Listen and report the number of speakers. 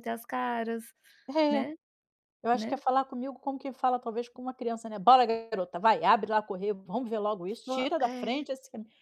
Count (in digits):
2